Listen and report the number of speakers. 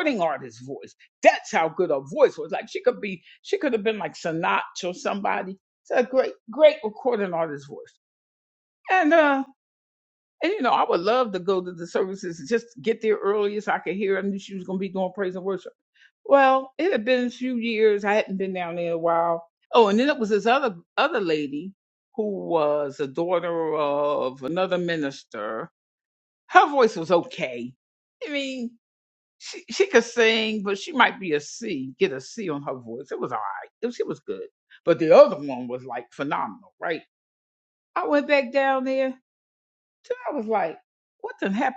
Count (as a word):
one